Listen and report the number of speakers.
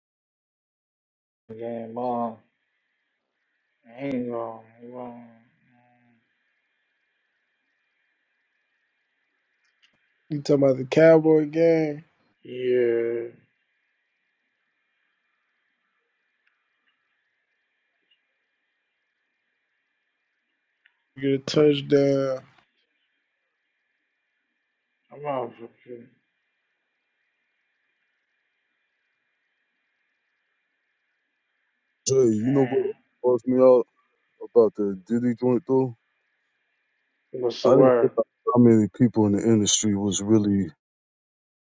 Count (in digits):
3